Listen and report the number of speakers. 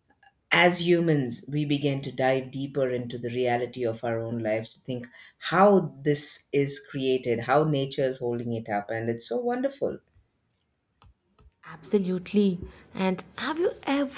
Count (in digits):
2